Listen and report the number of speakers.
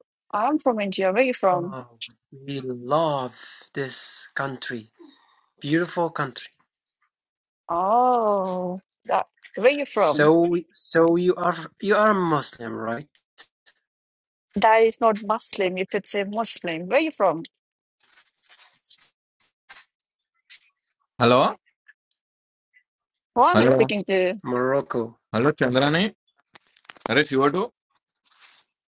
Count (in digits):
3